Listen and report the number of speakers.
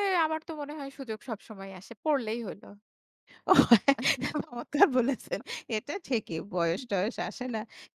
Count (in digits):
2